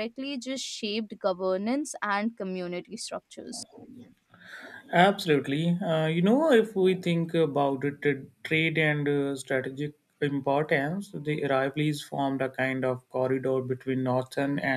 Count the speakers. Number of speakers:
2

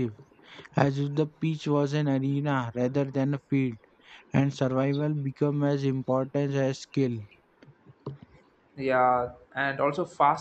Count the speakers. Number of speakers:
2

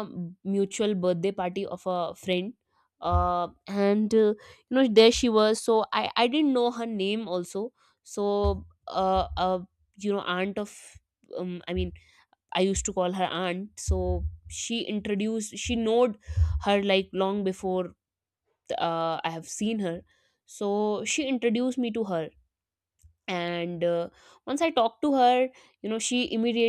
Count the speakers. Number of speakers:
1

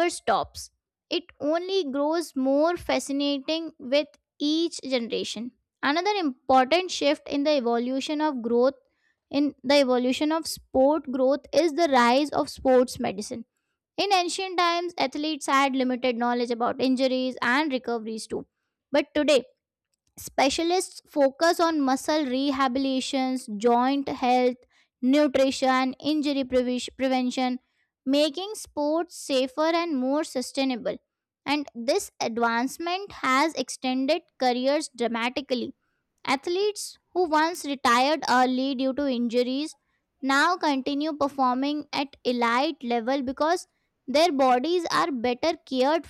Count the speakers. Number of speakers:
1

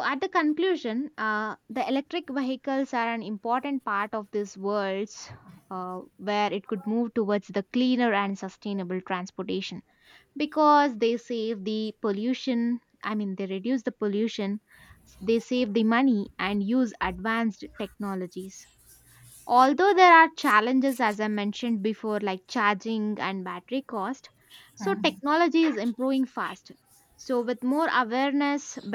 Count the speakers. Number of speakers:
1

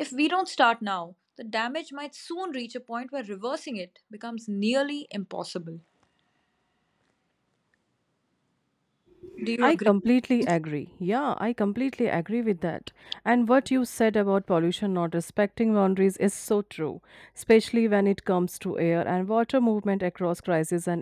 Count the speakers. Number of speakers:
2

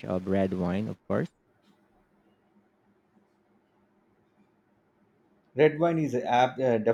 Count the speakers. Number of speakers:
2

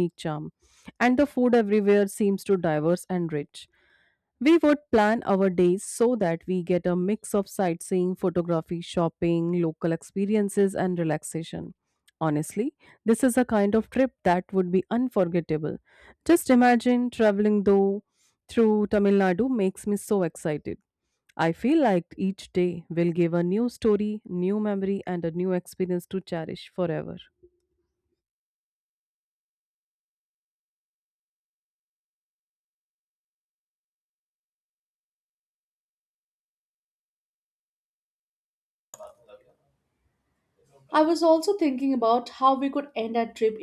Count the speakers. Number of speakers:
2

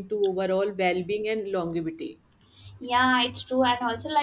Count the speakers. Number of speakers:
2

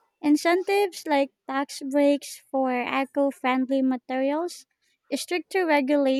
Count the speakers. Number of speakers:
1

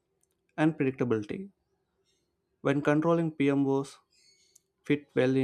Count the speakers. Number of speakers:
1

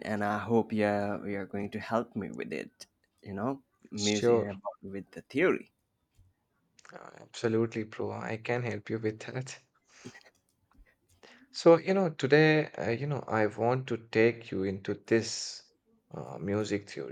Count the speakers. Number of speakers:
2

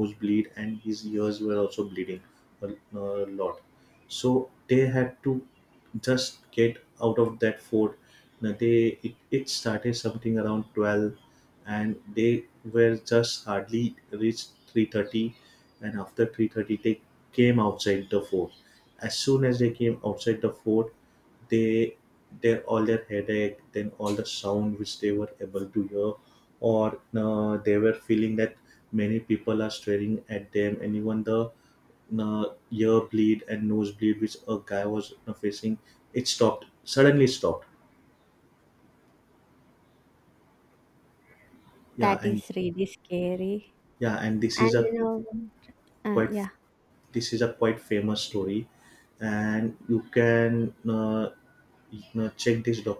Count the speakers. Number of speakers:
2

